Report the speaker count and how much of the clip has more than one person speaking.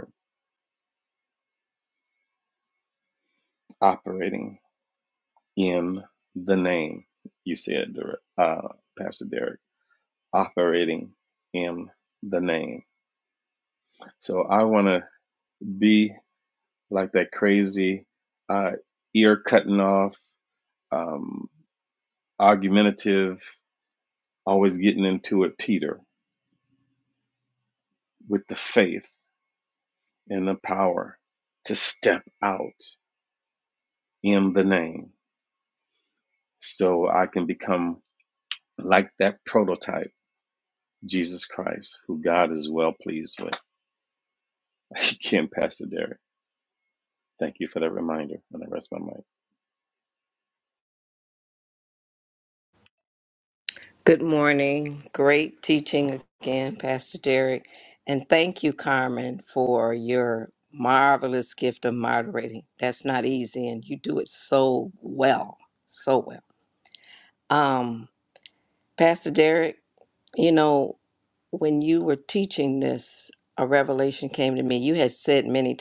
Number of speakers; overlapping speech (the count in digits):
2, no overlap